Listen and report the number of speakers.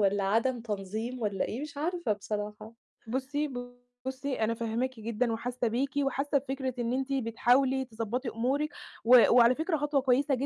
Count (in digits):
2